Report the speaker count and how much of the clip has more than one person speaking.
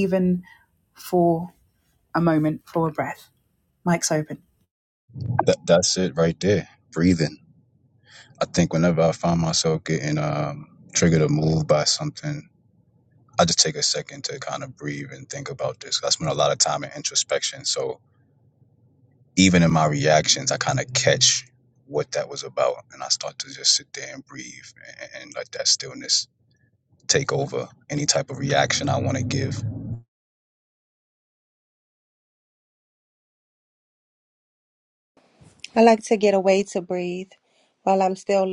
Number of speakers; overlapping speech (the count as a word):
three, no overlap